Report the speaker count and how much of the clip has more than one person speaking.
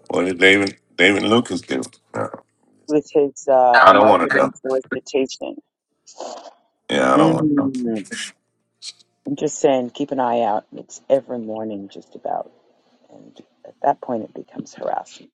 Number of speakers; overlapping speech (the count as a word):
two, about 8%